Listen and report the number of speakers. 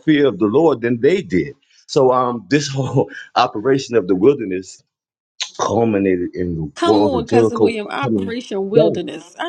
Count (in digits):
2